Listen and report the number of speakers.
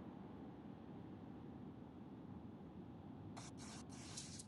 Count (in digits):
0